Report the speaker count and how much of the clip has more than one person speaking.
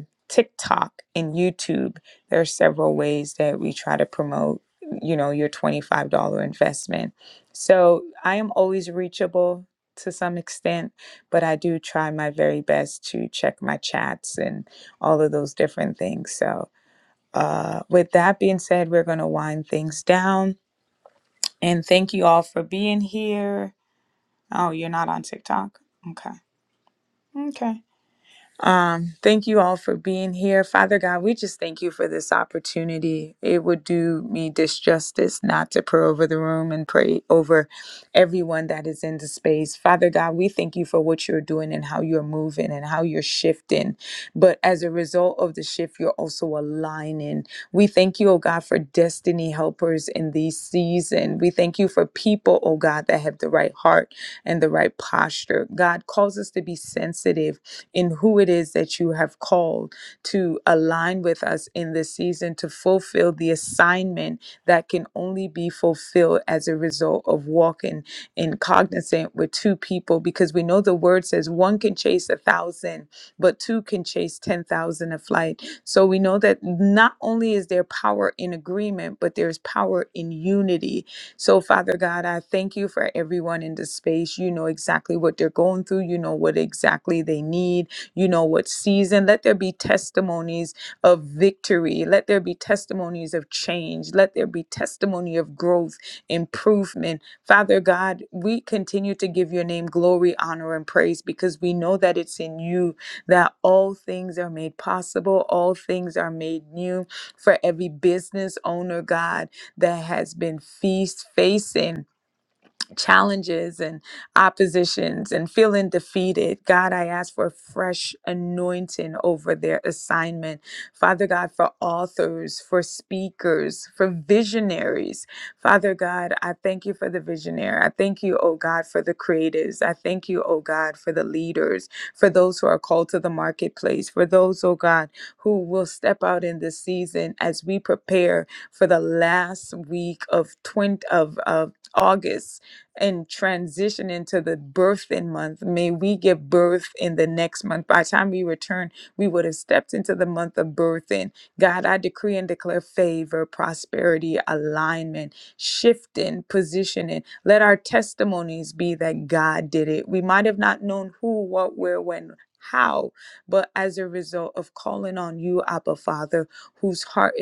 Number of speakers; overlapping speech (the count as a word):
one, no overlap